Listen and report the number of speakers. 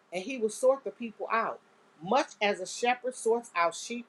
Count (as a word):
one